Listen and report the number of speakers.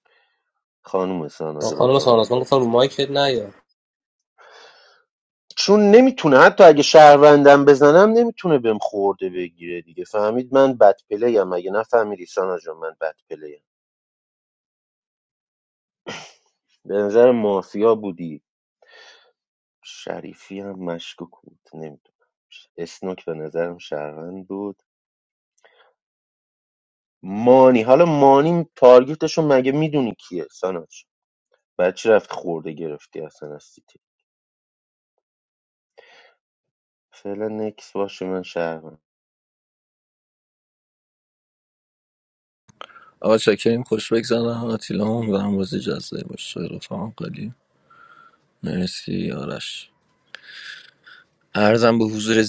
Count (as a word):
three